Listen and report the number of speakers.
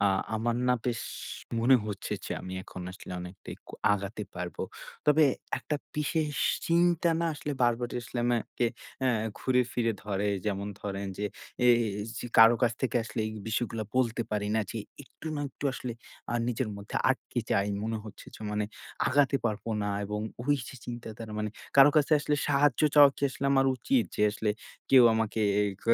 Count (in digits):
1